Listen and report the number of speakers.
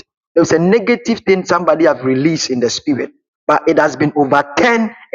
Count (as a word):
one